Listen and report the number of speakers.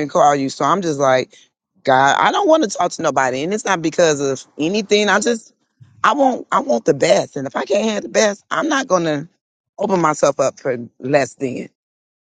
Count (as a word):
one